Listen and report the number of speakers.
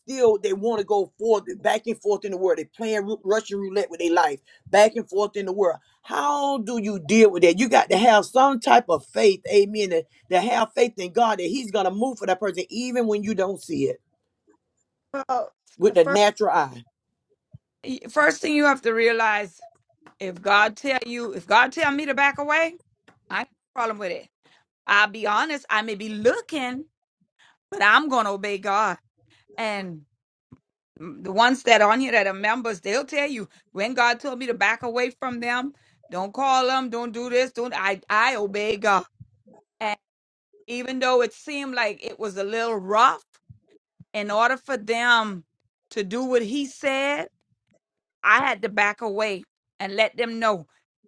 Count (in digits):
2